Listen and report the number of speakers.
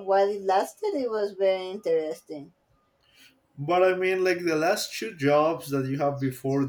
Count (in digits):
2